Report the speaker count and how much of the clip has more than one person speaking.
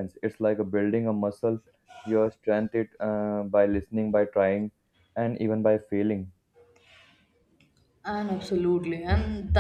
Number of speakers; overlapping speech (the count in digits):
2, no overlap